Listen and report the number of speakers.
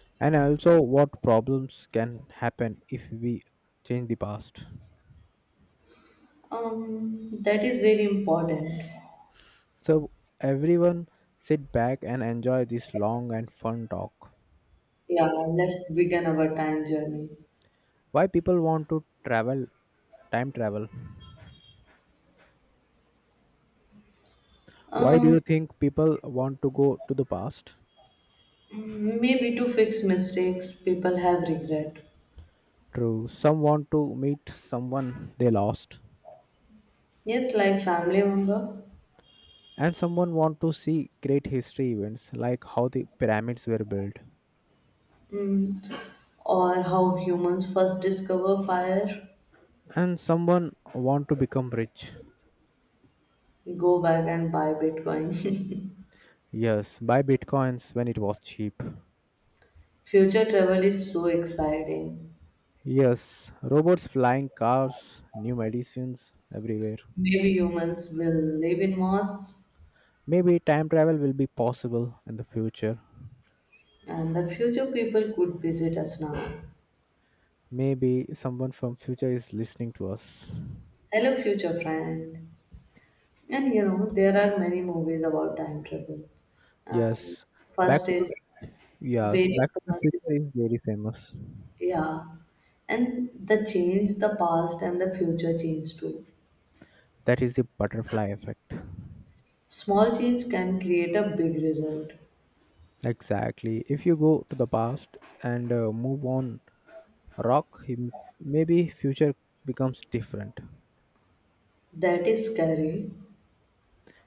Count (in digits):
2